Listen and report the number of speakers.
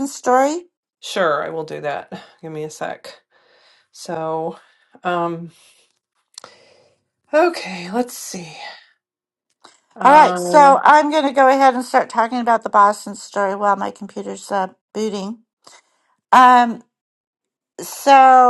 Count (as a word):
two